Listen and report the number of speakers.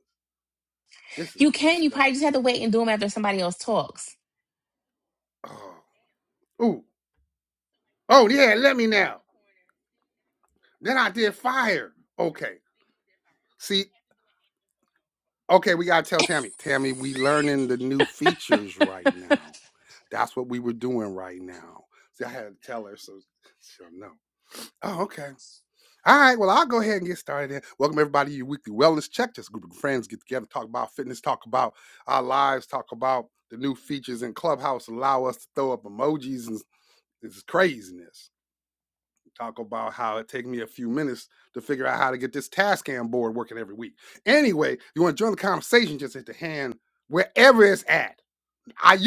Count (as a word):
two